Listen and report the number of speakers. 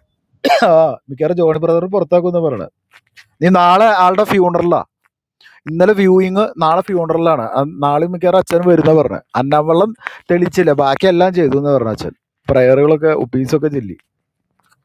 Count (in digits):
1